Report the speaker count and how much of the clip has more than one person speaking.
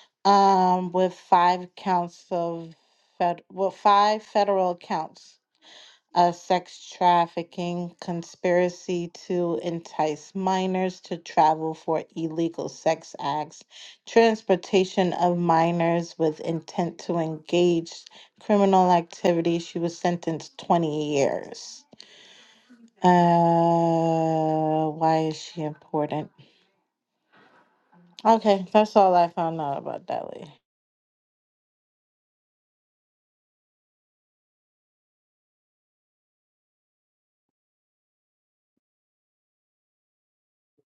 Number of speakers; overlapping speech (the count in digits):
1, no overlap